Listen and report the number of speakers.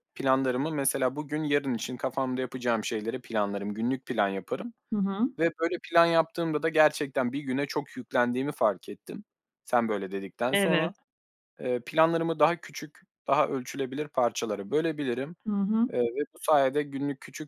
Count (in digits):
2